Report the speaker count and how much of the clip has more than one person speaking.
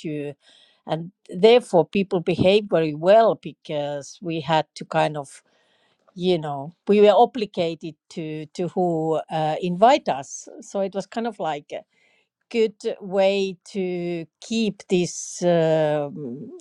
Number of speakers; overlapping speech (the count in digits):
1, no overlap